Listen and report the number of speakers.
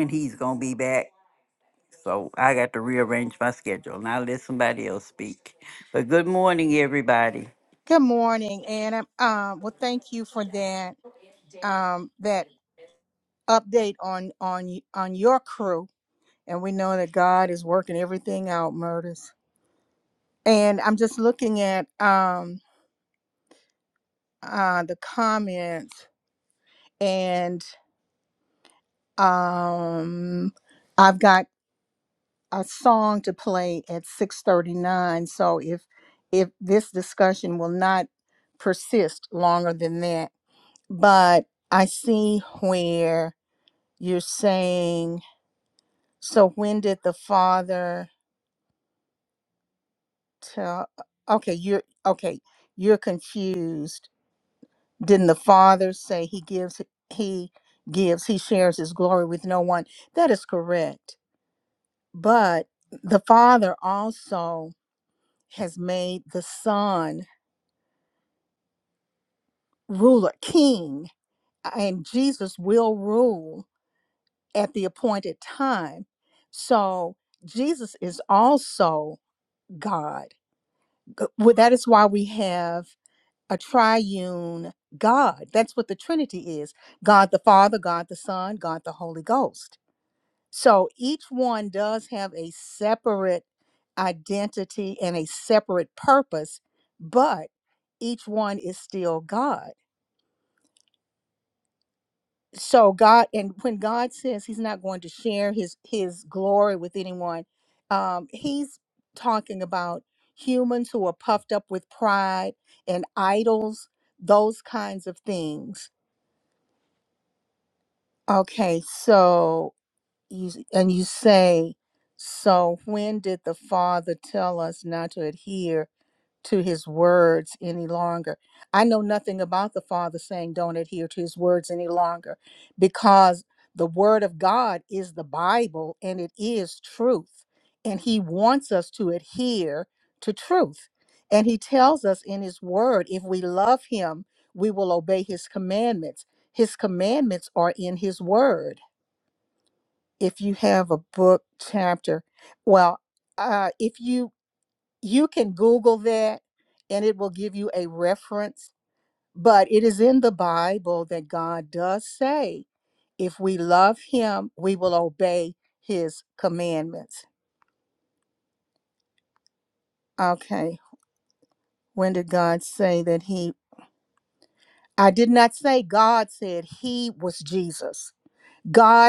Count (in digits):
2